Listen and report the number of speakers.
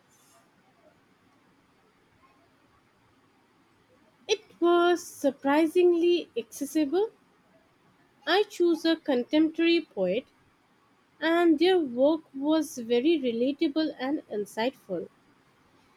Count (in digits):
1